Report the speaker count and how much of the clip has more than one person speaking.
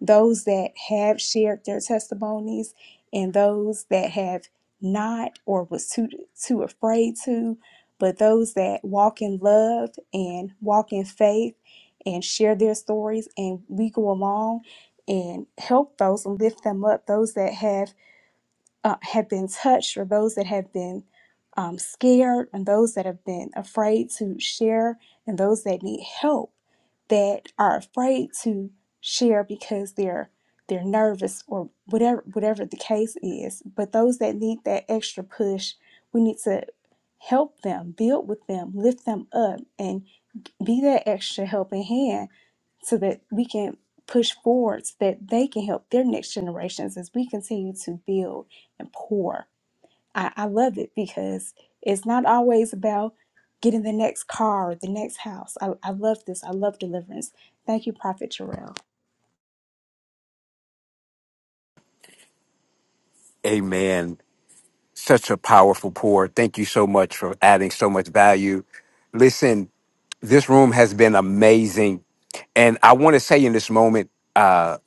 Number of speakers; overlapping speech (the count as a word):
two, no overlap